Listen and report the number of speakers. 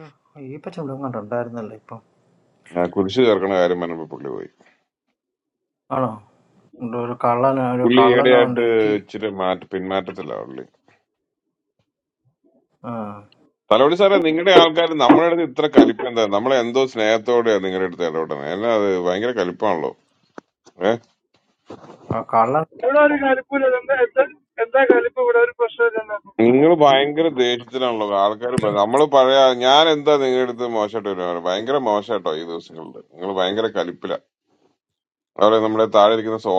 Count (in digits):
3